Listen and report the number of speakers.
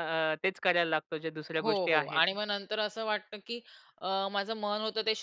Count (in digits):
2